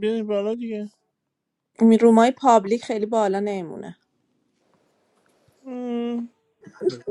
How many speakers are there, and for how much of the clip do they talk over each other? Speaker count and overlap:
2, no overlap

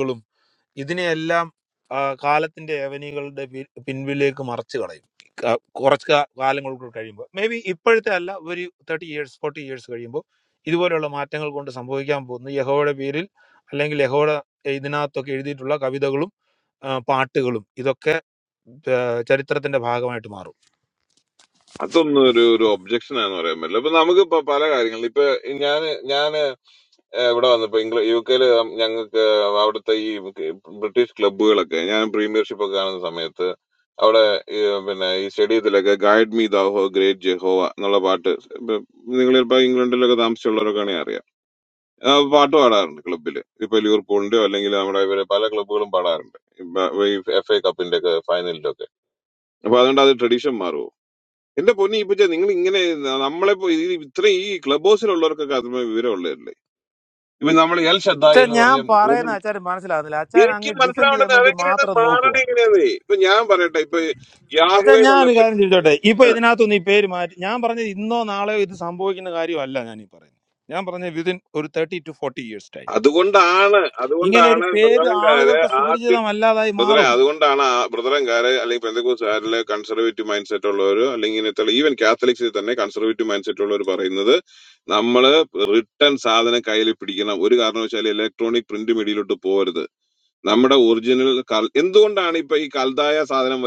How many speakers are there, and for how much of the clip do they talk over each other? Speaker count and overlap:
2, about 7%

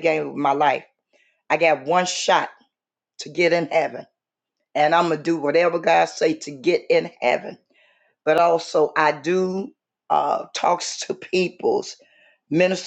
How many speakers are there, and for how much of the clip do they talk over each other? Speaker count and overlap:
1, no overlap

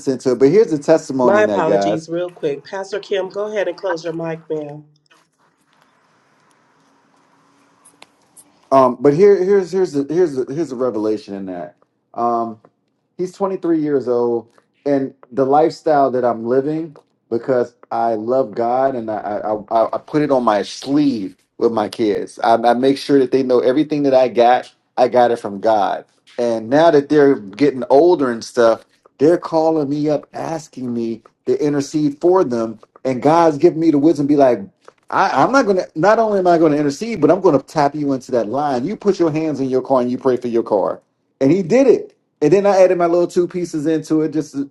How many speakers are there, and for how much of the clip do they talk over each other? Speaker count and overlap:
2, about 2%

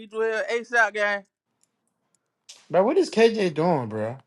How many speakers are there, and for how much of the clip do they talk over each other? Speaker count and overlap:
2, no overlap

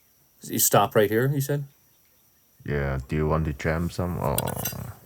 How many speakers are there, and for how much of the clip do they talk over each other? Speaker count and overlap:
2, no overlap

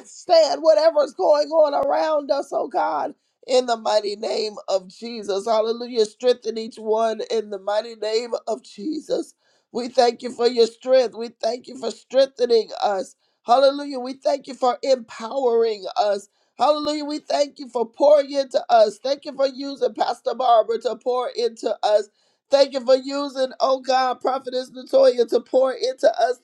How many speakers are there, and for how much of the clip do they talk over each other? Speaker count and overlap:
1, no overlap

